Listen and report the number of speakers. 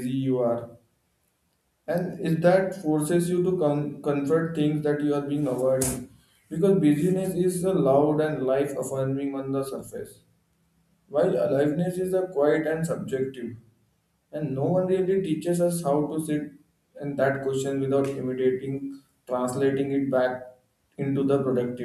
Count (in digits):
1